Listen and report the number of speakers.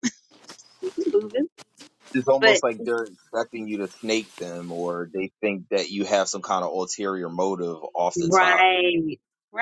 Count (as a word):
two